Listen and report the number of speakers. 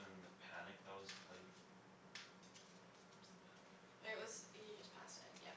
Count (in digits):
2